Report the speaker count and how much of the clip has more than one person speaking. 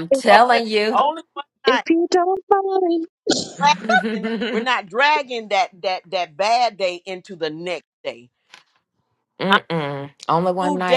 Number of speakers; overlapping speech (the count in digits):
3, about 11%